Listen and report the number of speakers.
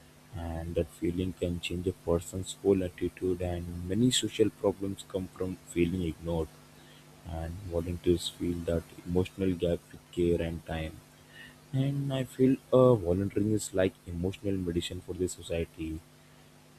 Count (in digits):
1